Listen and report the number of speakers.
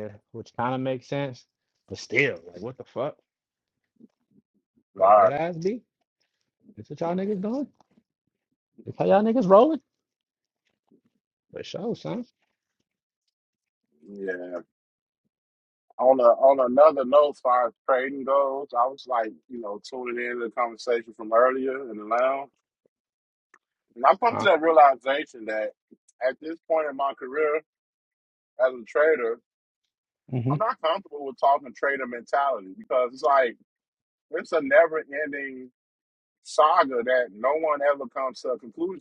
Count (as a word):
two